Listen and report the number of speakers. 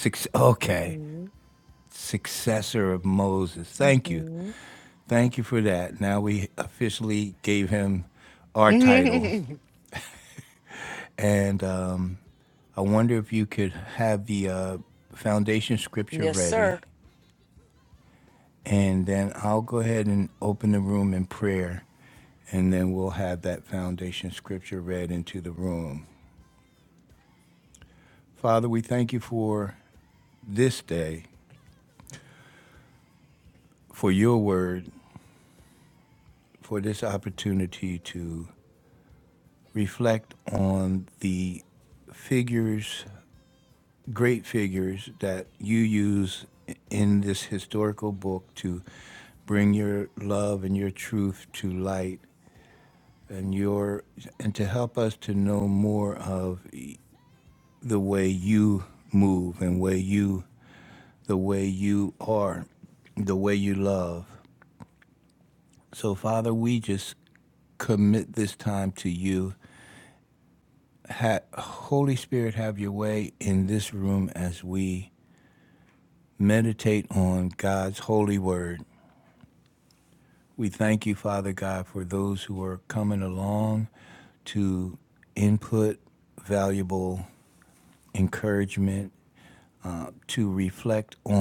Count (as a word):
two